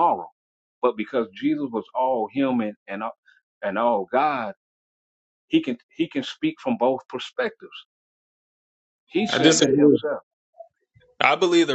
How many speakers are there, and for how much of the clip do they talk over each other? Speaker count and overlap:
2, about 6%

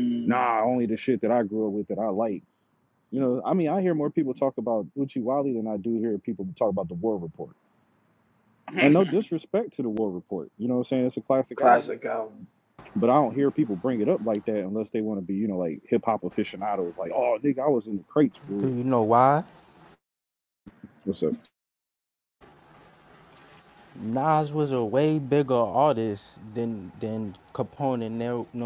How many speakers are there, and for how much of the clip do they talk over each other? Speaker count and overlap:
3, about 2%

